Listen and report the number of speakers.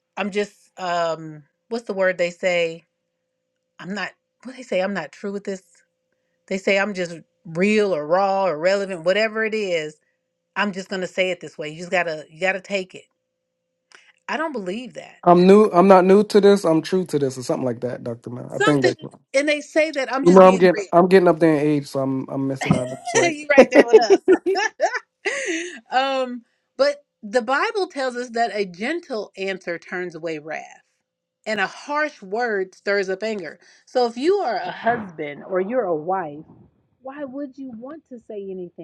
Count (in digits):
2